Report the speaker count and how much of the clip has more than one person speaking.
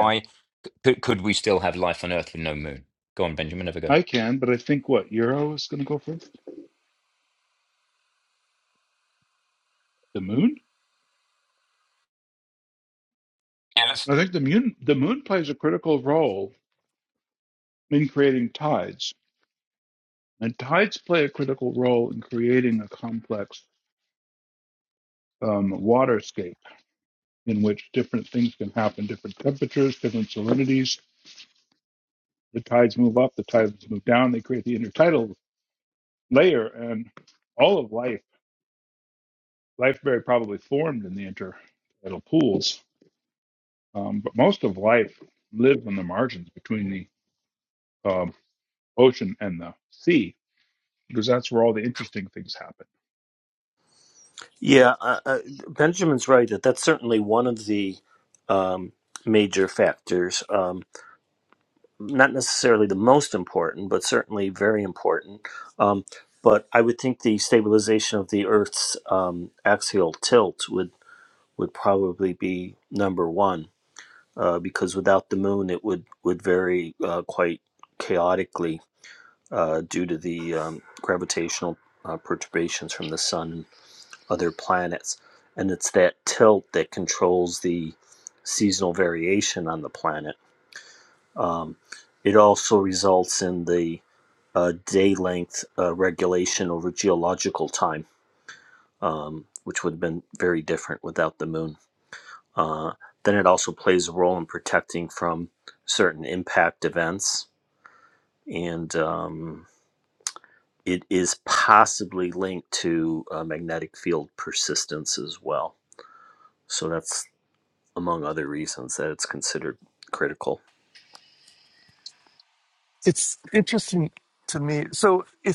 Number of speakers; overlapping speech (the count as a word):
four, under 1%